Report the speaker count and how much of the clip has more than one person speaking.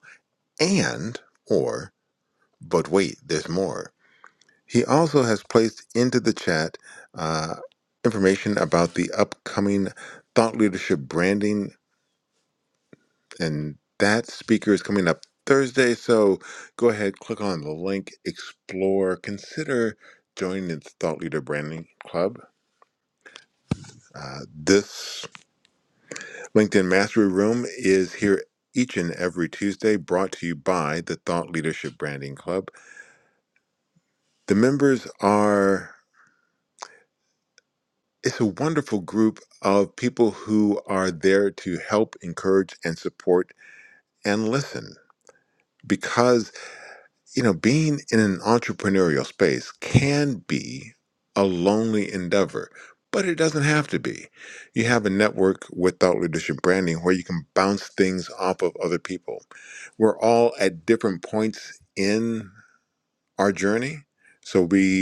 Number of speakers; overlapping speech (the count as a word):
one, no overlap